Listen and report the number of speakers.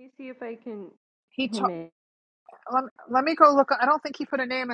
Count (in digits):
2